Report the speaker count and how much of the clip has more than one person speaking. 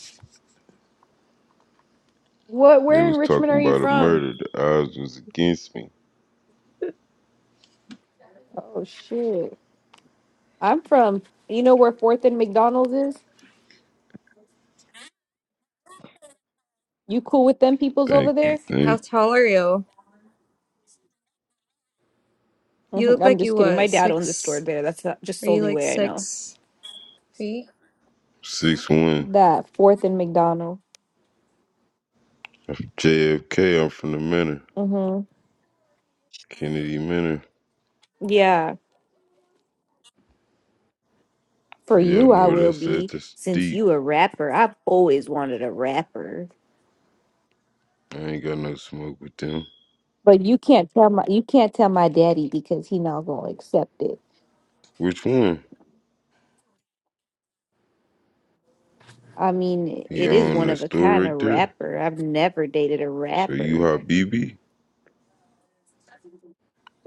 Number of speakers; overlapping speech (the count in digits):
3, about 11%